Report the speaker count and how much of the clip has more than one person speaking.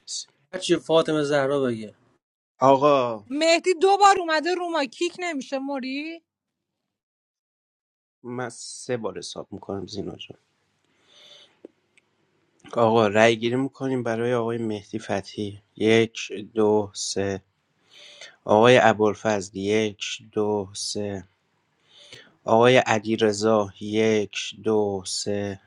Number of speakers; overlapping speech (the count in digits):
3, no overlap